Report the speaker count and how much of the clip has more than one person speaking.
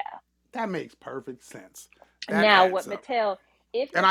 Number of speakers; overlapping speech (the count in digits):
2, about 22%